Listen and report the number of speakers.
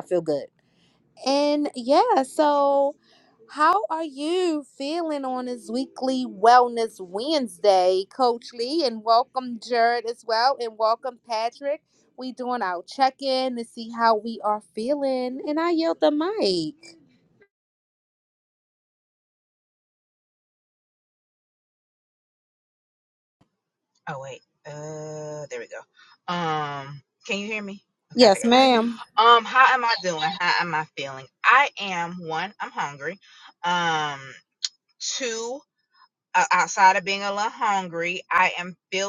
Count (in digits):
2